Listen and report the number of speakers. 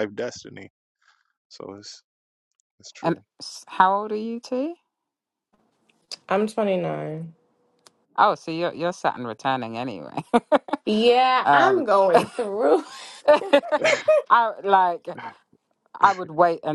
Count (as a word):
three